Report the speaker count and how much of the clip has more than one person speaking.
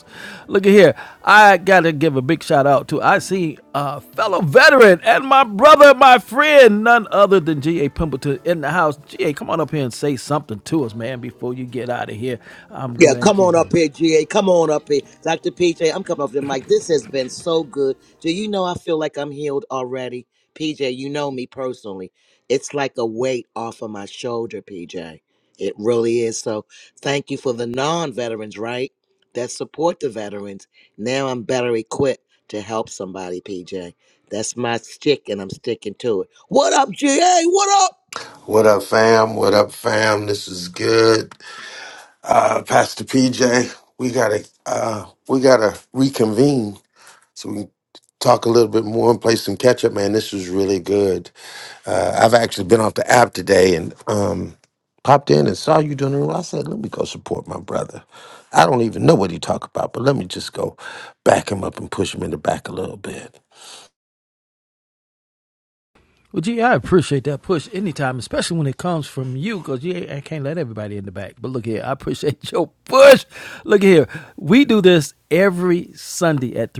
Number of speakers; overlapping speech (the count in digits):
3, about 1%